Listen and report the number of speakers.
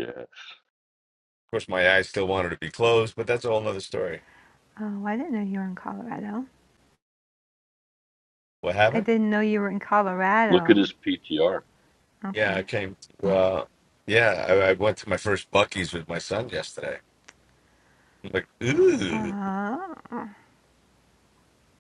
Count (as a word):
three